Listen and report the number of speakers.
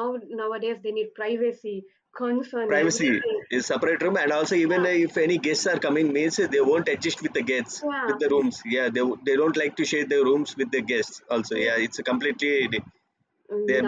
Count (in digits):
2